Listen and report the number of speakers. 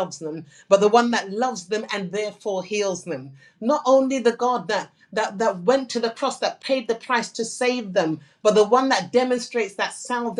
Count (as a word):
one